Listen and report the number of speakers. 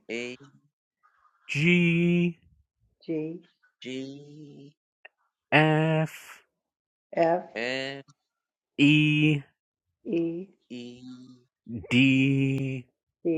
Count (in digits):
3